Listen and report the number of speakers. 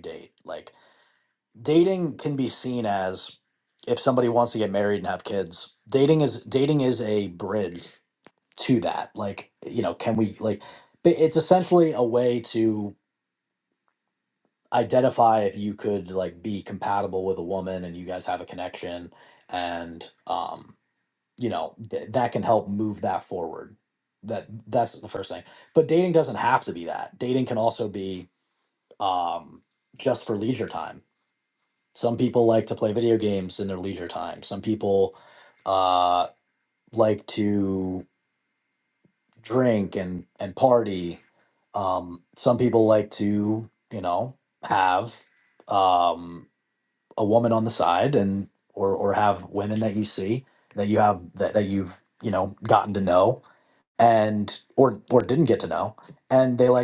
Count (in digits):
1